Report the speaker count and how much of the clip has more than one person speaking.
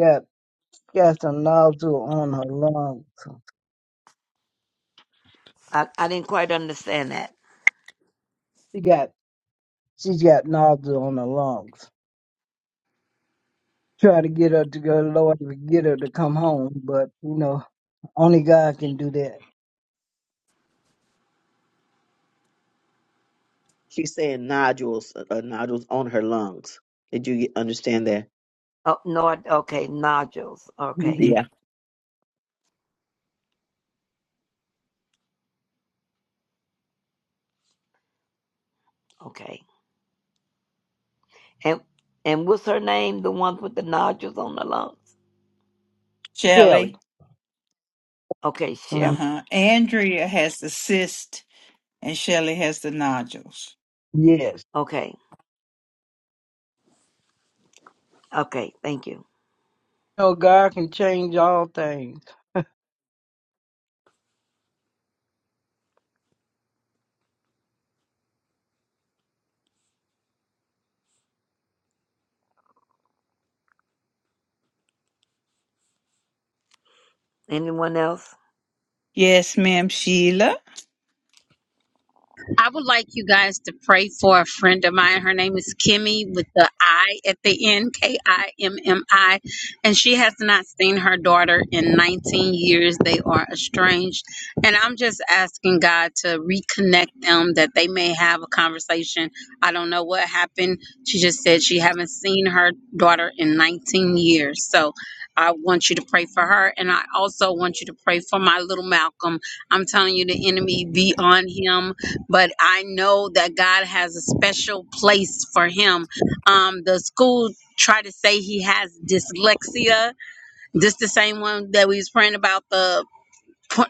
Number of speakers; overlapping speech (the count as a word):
five, about 1%